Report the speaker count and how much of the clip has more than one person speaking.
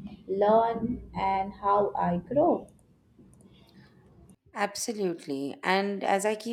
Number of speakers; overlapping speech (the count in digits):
2, no overlap